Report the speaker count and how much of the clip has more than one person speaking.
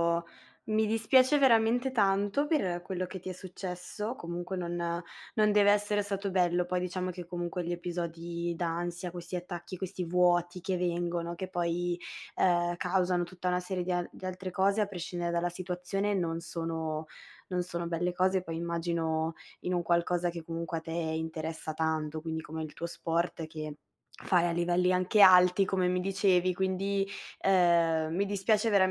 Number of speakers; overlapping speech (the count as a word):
one, no overlap